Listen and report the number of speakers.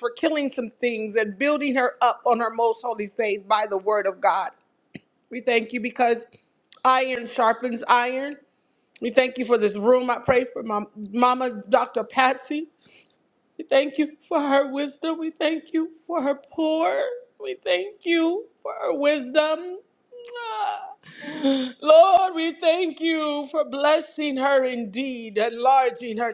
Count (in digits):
1